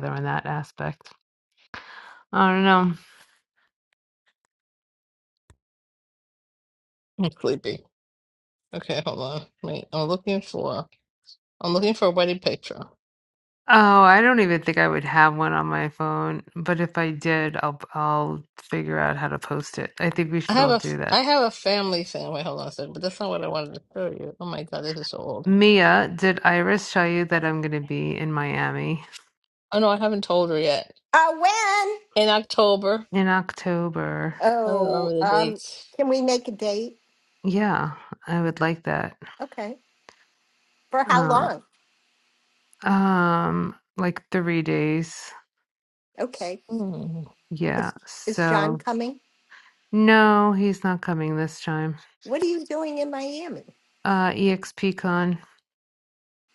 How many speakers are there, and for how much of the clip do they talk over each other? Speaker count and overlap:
three, about 4%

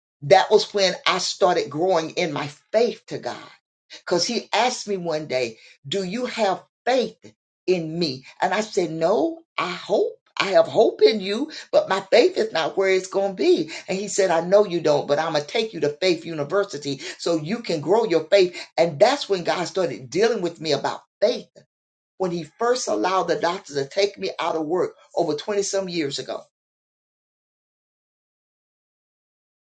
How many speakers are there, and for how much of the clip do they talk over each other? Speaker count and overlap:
one, no overlap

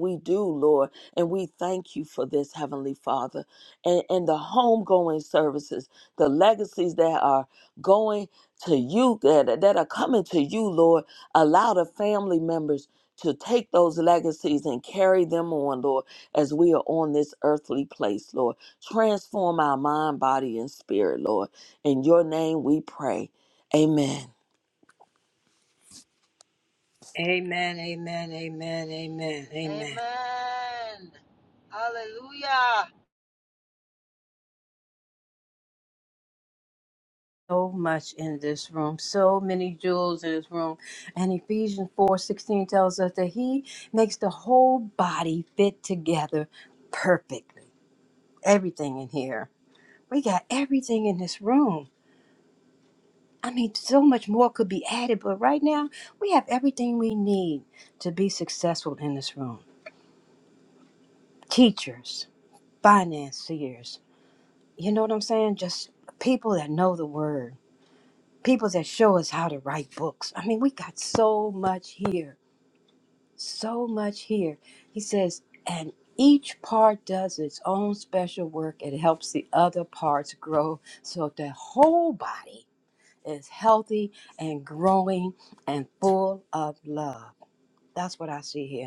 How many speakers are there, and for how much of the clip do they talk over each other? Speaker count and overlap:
three, under 1%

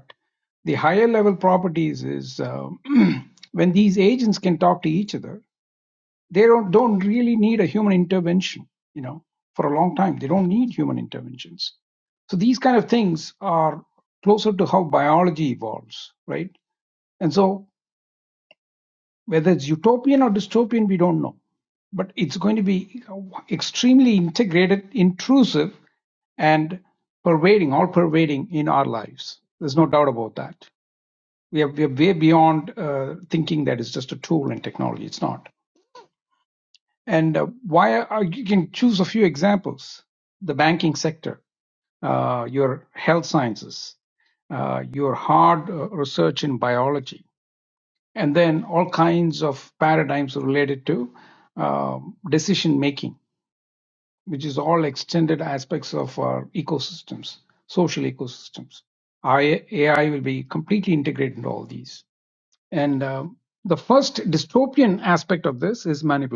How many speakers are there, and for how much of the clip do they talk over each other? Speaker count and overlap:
one, no overlap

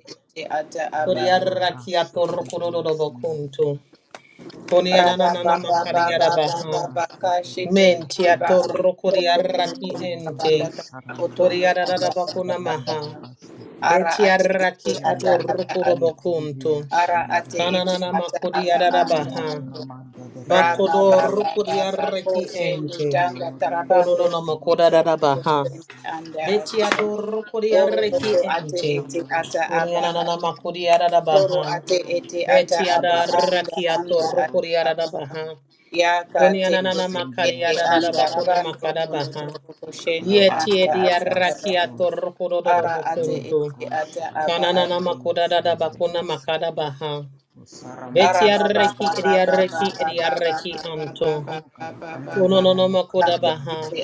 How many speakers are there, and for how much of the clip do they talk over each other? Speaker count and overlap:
three, about 74%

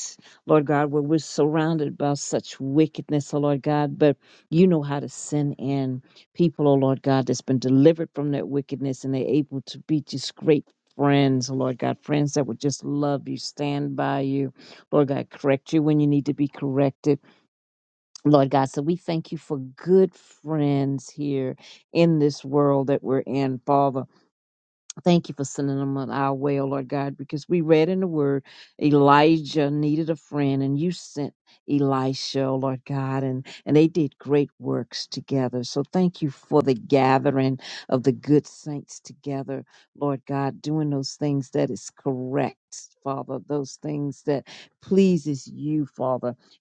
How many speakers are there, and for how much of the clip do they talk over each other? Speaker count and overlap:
one, no overlap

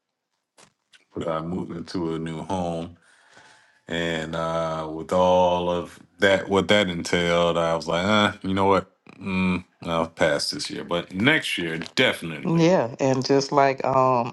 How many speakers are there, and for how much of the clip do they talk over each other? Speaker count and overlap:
two, about 1%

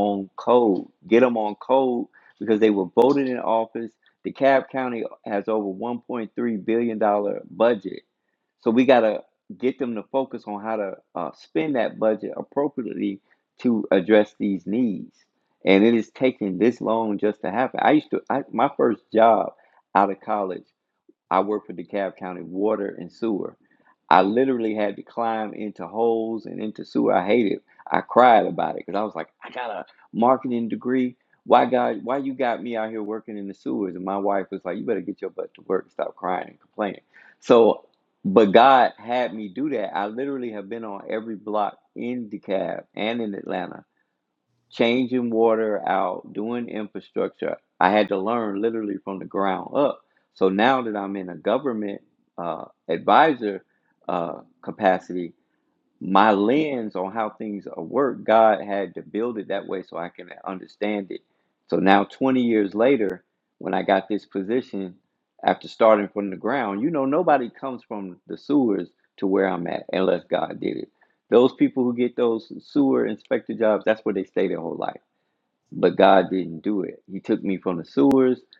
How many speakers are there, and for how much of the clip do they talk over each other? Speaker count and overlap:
one, no overlap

